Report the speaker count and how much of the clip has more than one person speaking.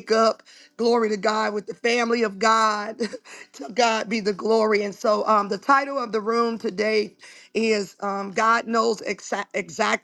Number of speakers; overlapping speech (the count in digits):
1, no overlap